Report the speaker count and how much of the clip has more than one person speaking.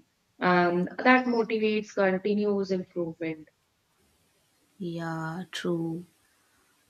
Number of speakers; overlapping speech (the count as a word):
two, no overlap